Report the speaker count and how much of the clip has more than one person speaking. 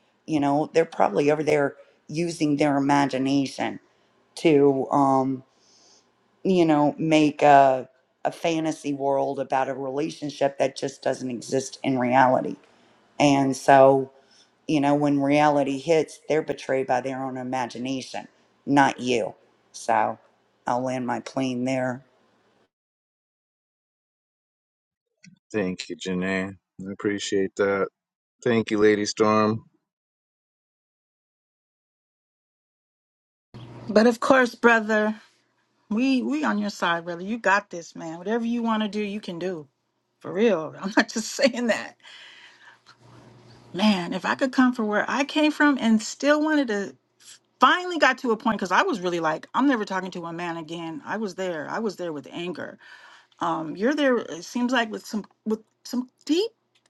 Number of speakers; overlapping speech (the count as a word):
three, no overlap